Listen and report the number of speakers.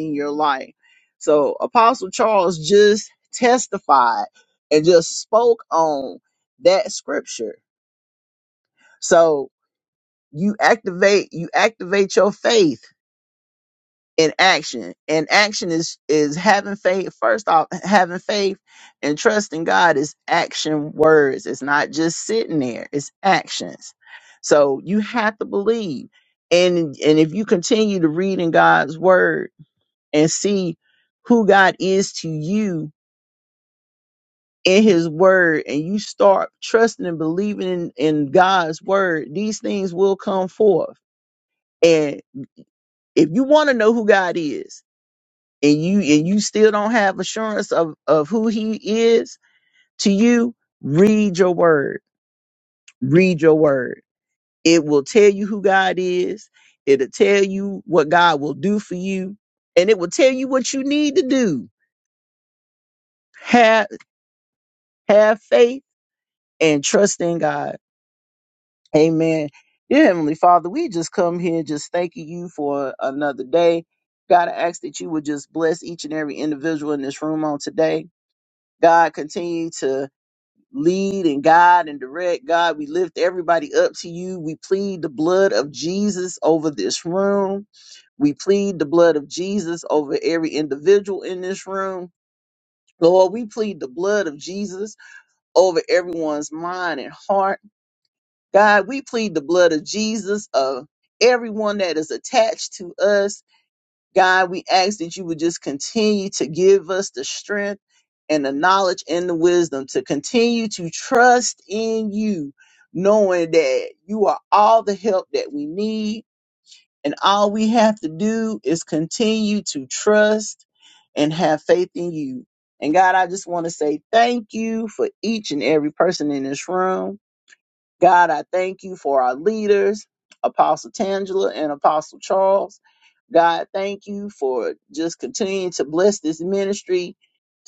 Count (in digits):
1